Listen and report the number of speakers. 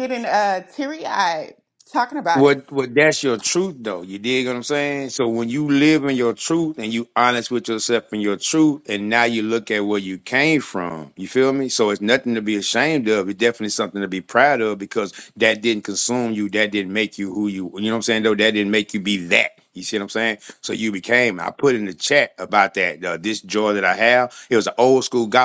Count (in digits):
2